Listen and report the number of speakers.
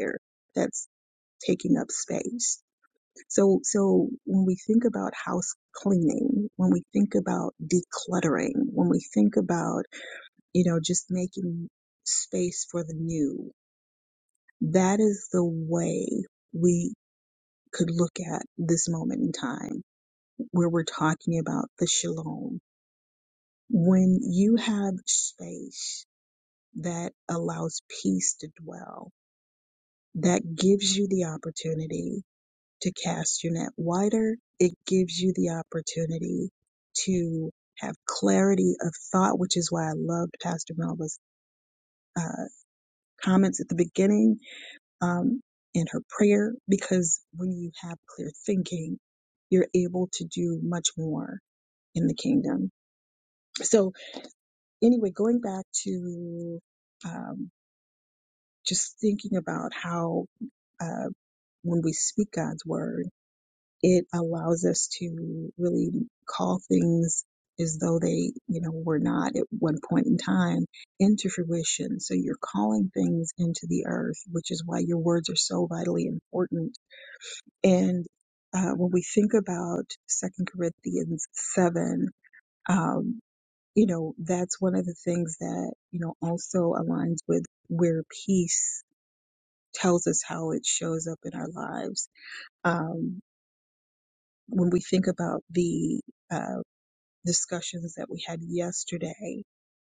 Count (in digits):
1